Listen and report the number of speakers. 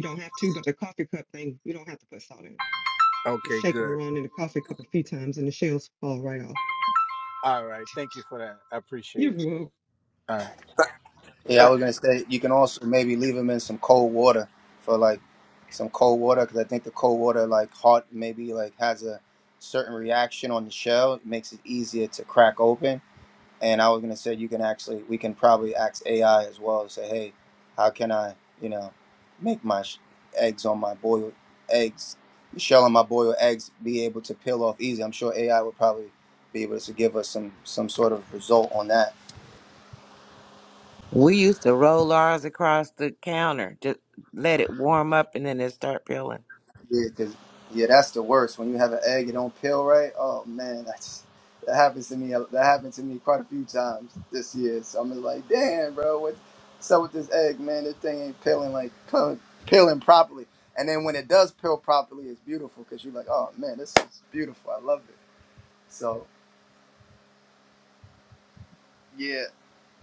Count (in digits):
4